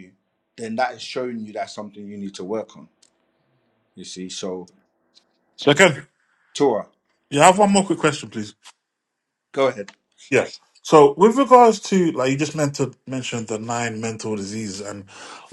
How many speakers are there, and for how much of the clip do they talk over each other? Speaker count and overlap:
2, no overlap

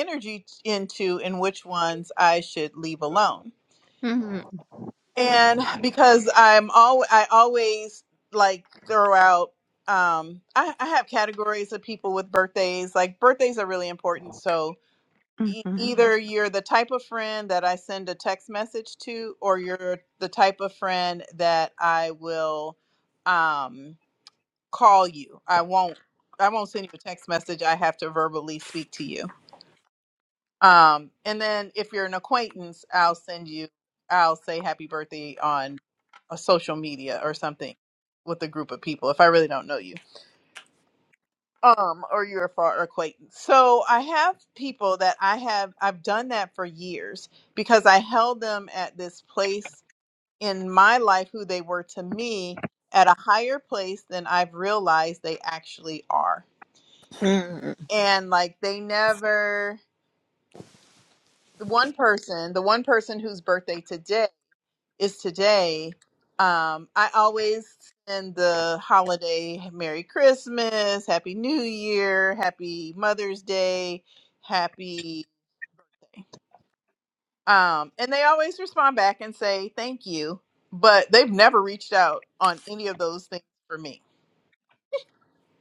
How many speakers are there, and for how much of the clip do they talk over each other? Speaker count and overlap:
2, under 1%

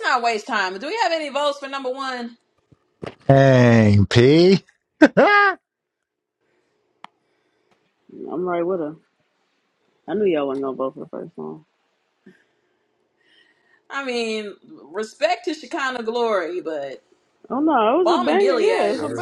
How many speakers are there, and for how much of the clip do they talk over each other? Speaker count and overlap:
3, about 6%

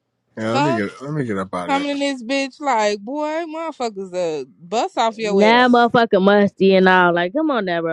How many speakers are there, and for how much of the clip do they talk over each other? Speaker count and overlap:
3, about 14%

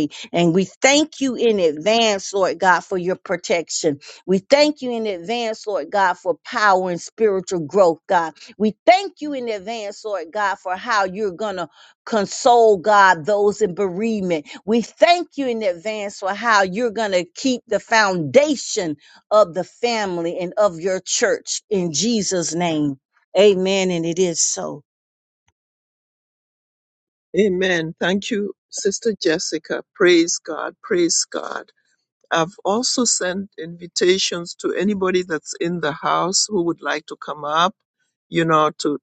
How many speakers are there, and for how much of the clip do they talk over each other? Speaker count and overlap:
2, no overlap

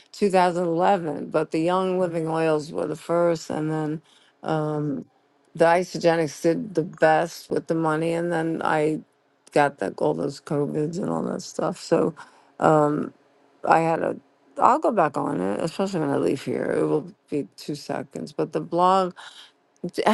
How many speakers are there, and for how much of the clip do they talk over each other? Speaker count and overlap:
1, no overlap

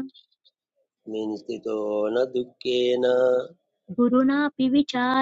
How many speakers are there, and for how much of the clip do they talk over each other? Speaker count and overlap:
2, no overlap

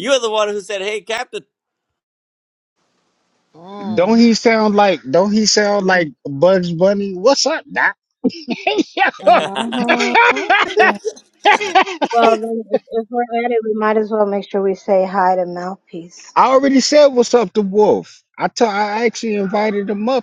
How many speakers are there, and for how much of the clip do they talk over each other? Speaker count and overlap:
4, about 3%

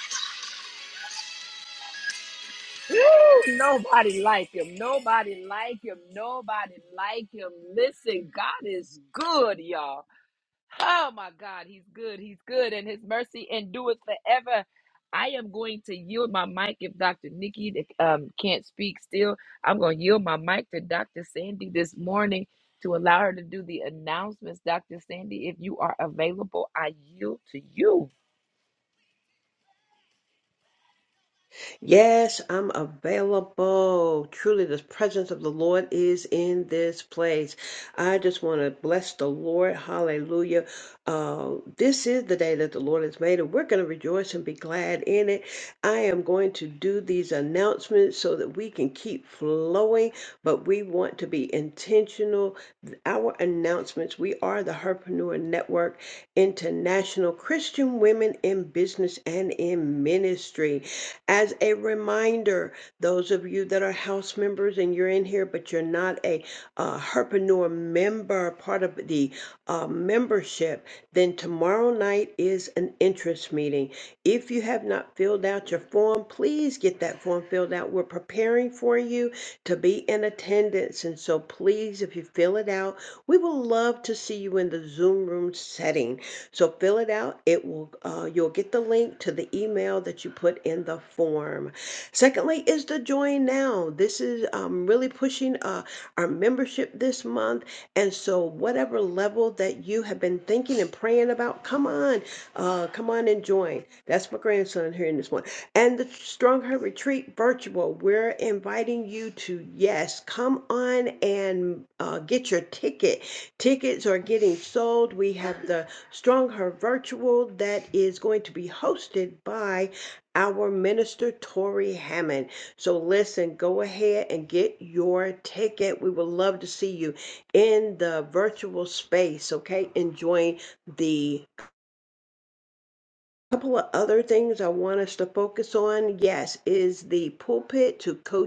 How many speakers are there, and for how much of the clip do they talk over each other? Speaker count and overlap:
2, no overlap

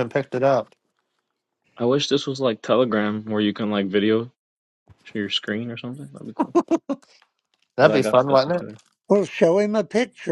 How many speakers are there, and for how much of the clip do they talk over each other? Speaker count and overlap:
3, about 8%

